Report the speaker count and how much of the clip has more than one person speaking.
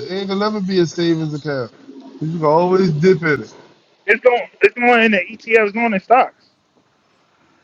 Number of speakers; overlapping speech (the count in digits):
2, no overlap